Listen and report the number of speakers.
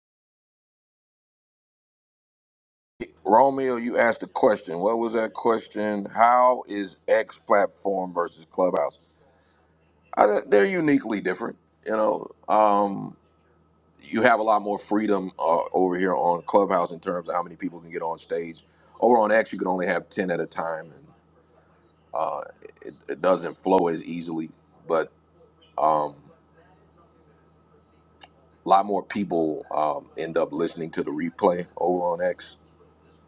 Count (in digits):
1